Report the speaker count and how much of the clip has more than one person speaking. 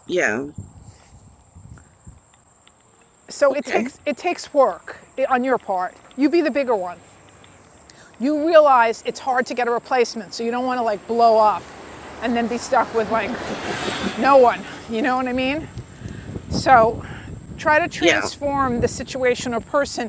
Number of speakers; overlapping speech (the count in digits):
2, about 4%